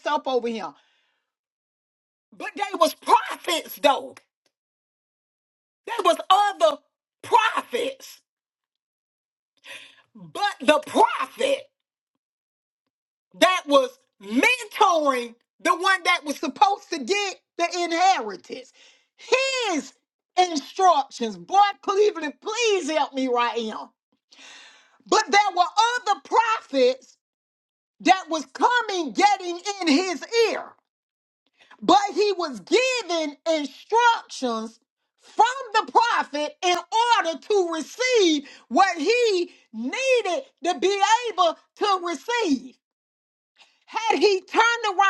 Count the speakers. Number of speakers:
1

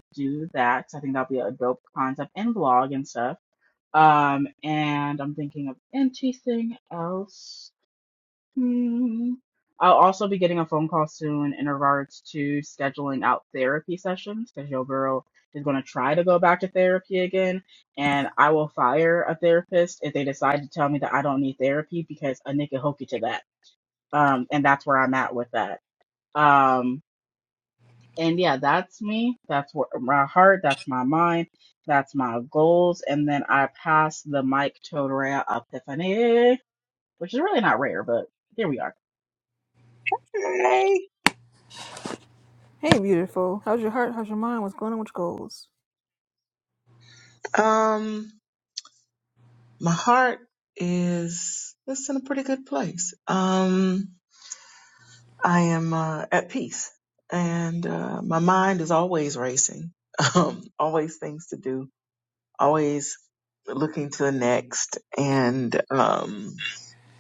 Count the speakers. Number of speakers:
3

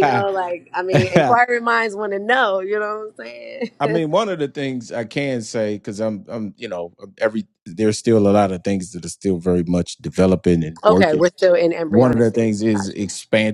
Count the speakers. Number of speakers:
2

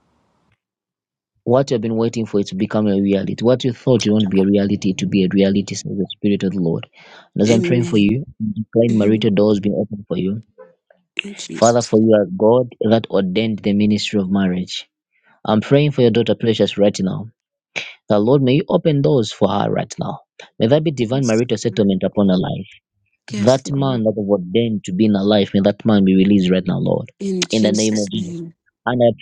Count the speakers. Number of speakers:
2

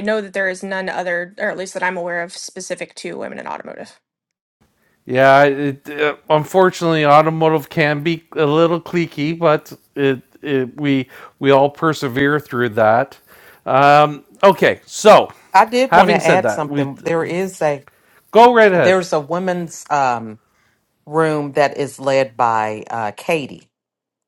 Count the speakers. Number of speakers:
3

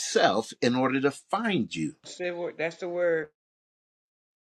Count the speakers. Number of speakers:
2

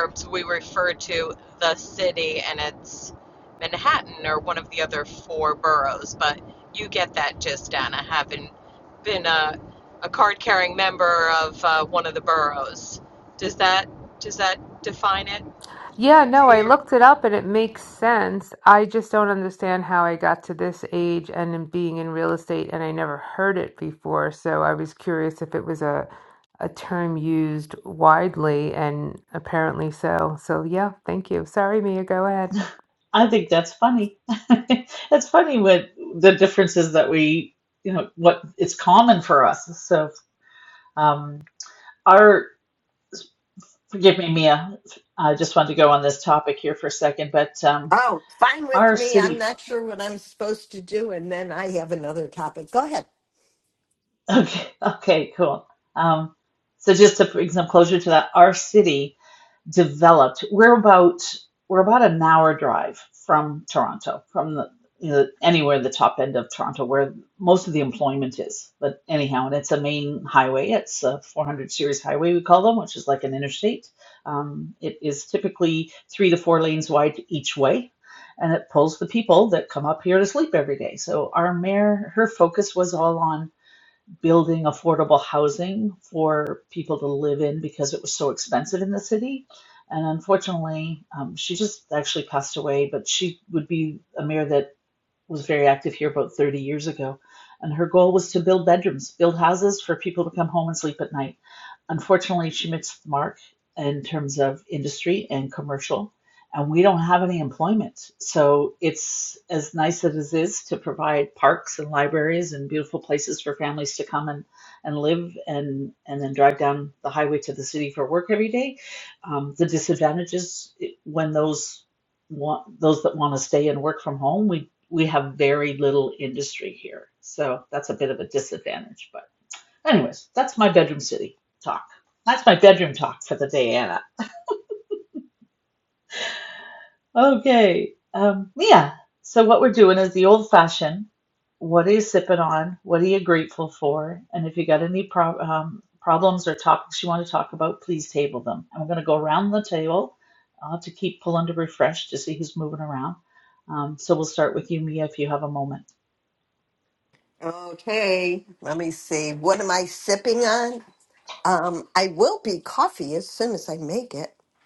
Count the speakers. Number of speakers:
4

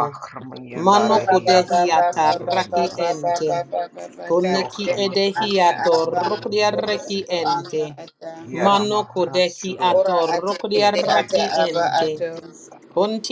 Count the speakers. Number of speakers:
3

